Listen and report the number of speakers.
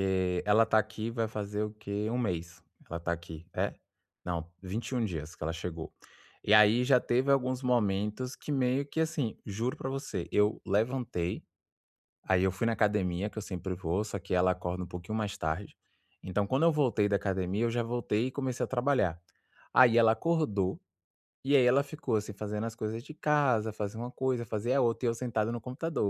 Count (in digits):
1